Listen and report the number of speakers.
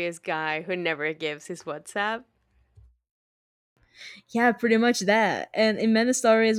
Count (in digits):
2